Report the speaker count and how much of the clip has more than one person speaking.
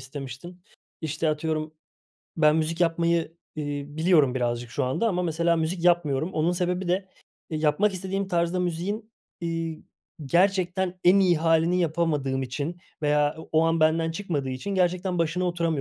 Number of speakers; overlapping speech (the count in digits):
1, no overlap